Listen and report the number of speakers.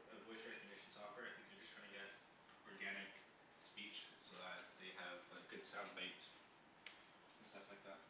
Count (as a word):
one